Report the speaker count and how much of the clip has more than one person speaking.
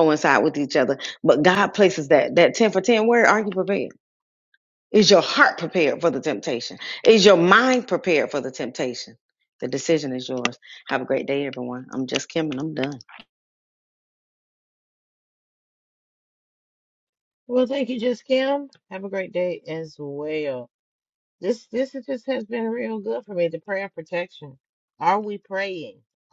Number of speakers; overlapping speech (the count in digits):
2, no overlap